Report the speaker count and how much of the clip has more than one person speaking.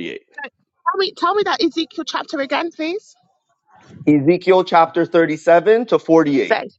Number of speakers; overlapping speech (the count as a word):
two, about 1%